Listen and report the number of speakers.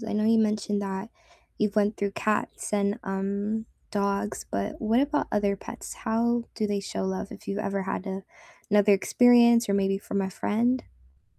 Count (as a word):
one